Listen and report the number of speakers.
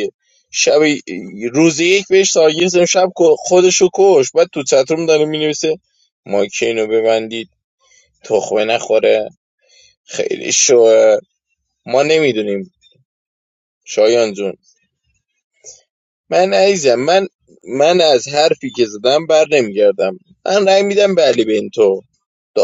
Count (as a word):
one